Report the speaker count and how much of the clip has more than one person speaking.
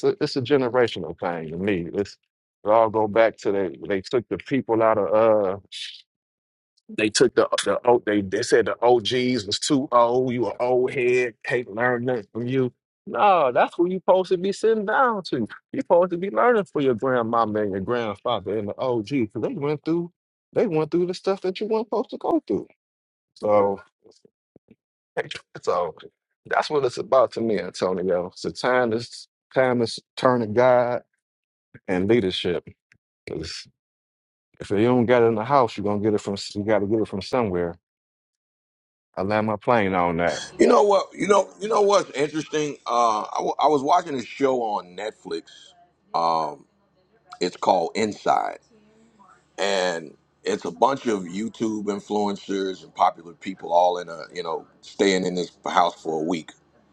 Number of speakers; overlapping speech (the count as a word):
two, no overlap